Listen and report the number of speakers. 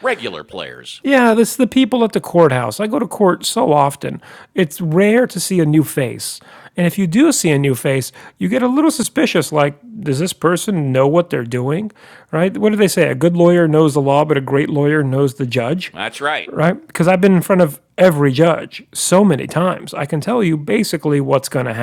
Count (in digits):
2